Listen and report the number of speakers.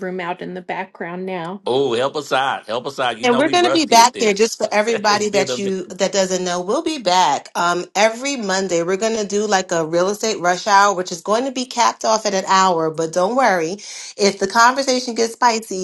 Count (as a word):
three